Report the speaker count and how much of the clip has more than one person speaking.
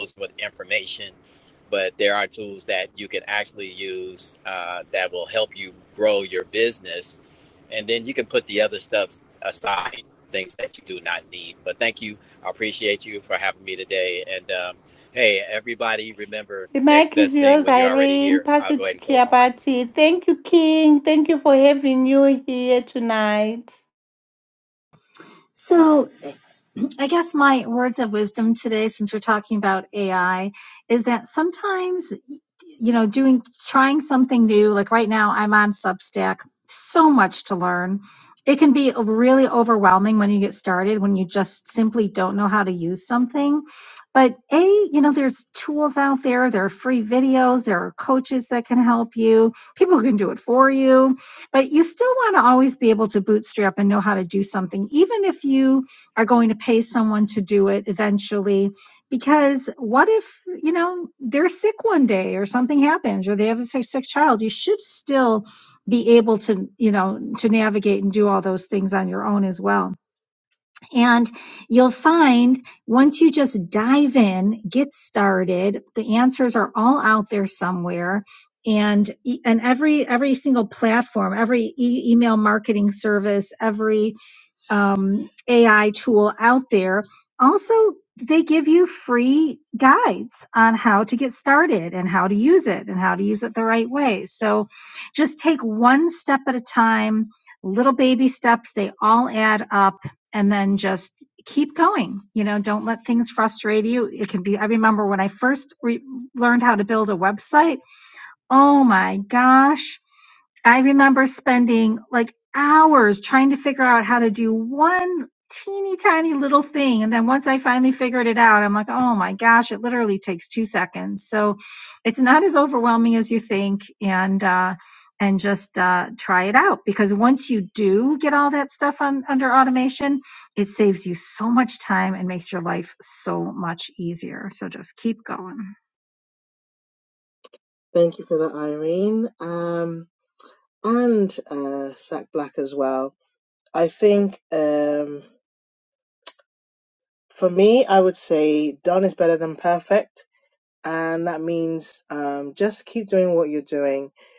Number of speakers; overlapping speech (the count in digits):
4, about 2%